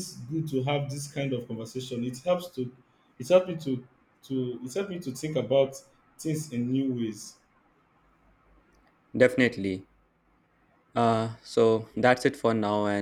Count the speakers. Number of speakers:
2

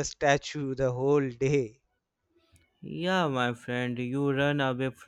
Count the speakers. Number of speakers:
2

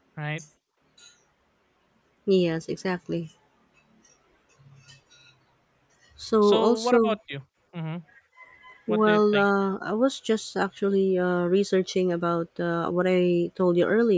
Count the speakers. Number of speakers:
2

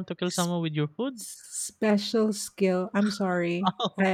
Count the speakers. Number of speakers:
2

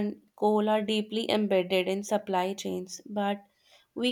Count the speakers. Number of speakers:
1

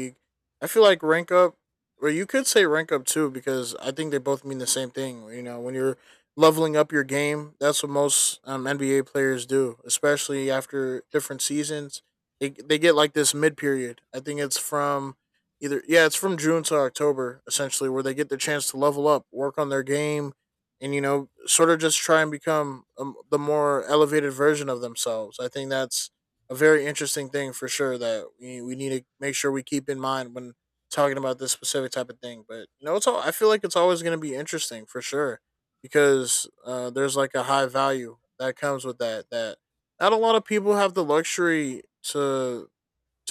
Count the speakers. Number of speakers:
1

